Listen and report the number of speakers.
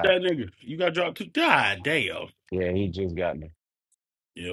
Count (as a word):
two